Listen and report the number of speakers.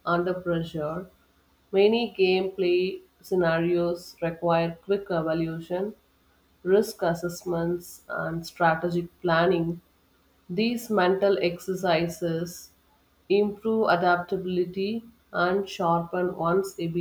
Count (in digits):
1